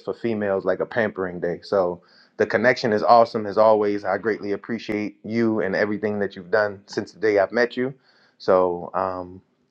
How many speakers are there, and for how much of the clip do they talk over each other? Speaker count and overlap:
1, no overlap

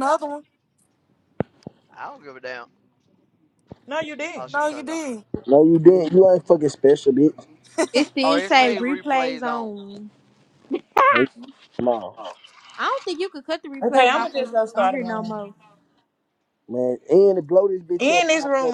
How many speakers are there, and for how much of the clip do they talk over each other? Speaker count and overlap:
5, about 23%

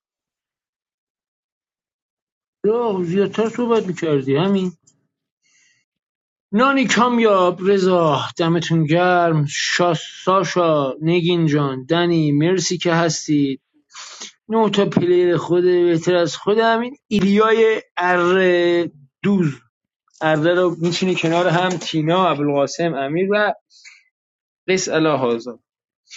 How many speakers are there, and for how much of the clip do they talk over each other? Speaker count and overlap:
1, no overlap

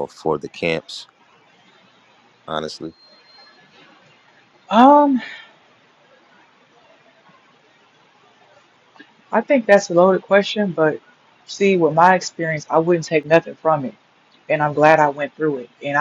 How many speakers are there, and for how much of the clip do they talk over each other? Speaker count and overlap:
2, no overlap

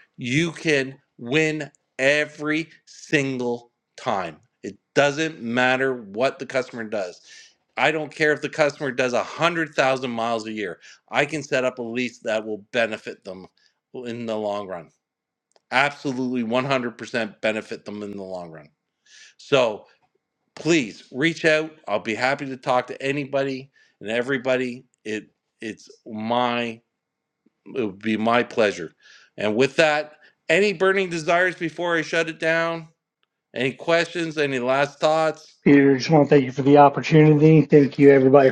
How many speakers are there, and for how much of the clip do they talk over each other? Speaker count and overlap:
2, no overlap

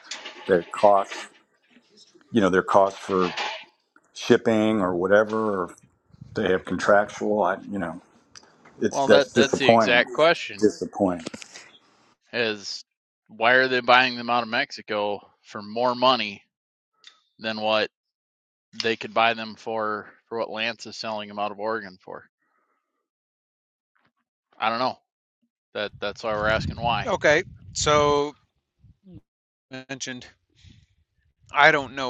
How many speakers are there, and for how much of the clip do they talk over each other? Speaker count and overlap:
3, about 4%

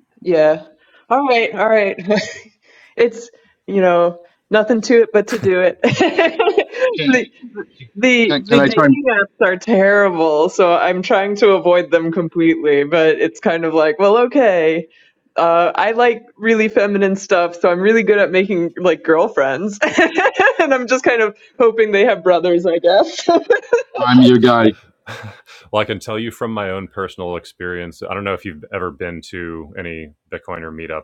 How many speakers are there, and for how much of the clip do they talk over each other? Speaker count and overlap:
3, about 2%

